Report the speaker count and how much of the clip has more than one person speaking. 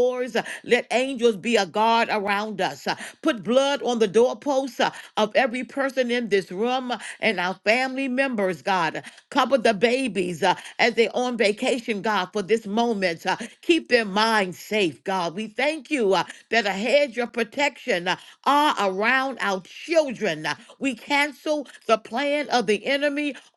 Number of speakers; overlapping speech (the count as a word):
one, no overlap